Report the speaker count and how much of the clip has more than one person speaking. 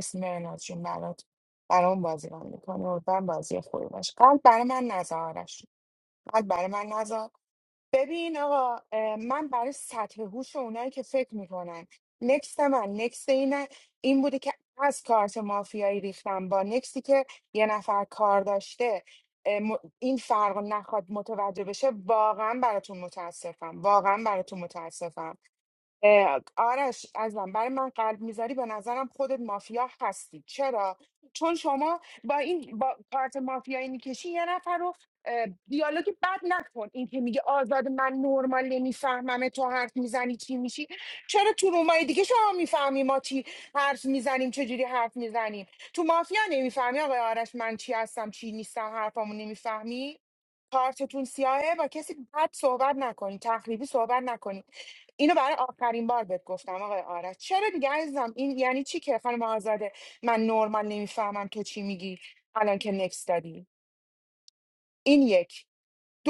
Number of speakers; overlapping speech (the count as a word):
one, no overlap